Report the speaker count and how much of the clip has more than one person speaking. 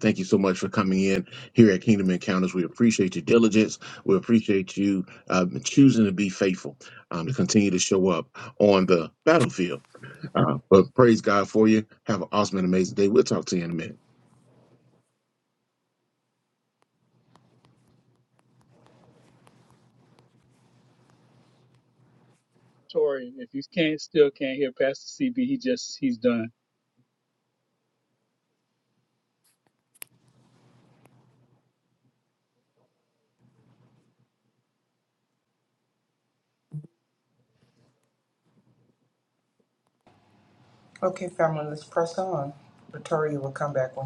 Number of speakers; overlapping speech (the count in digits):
3, no overlap